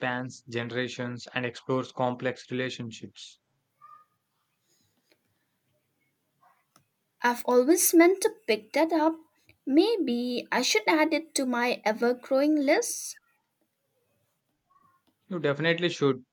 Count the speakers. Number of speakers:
two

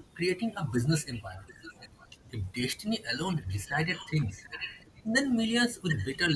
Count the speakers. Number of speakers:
one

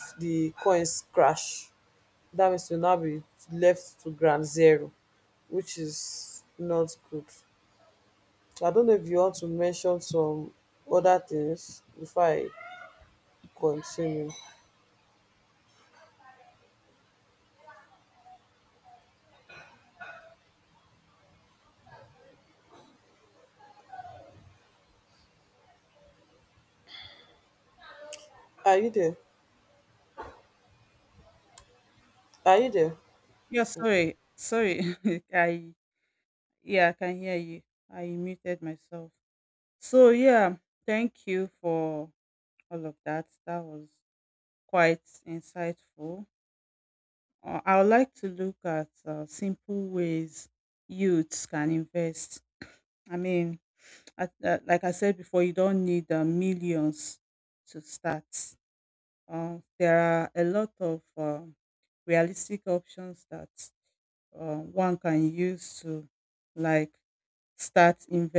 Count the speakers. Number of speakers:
two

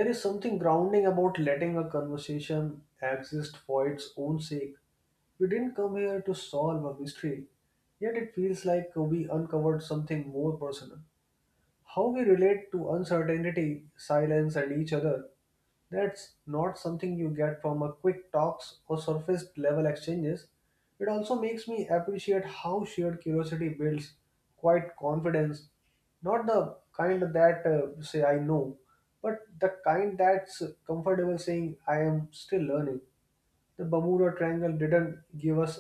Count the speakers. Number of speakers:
one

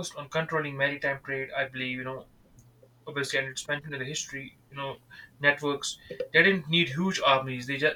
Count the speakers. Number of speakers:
one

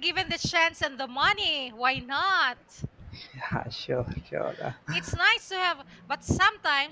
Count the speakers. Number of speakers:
two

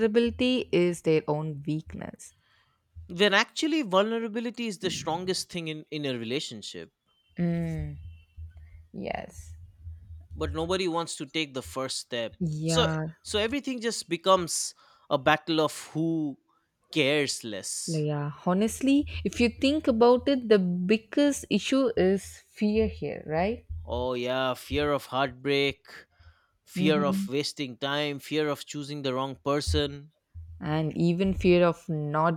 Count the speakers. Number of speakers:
two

